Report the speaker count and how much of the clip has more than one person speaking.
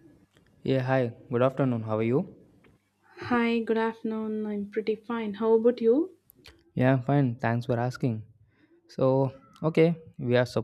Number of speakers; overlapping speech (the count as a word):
two, no overlap